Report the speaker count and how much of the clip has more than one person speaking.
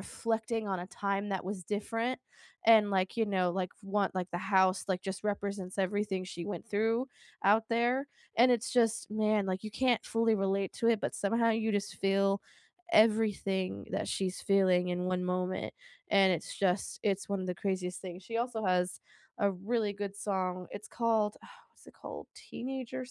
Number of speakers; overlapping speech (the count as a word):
one, no overlap